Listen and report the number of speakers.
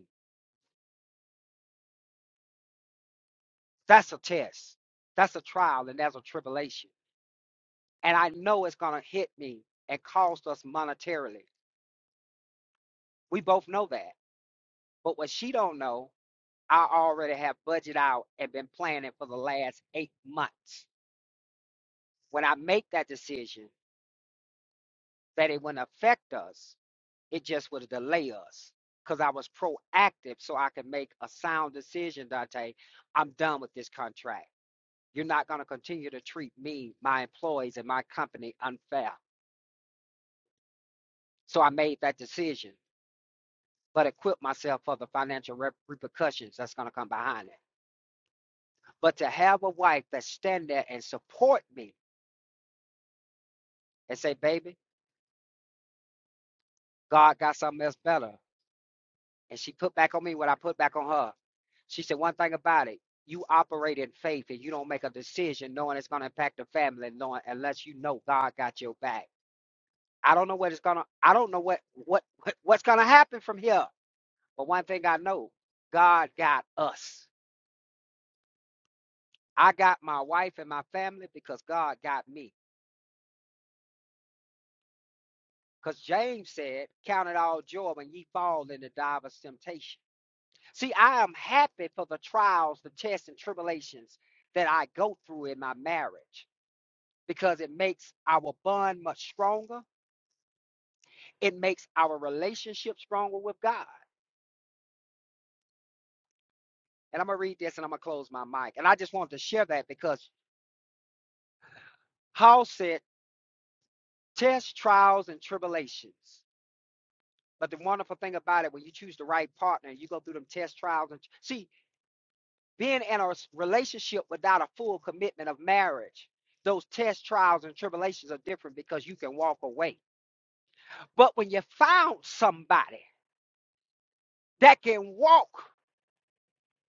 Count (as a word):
one